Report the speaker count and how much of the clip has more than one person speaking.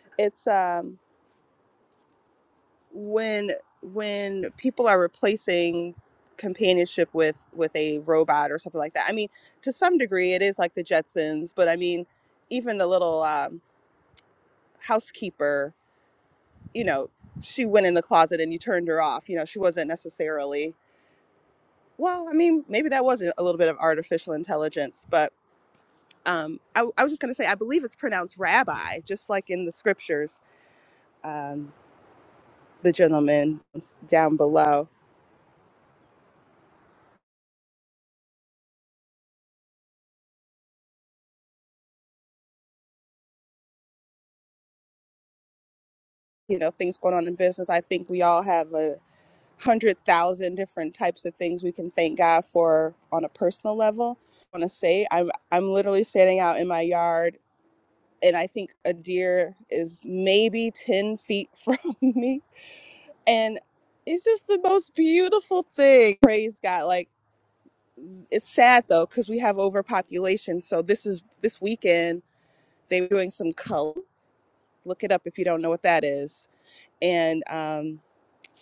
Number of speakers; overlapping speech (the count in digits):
1, no overlap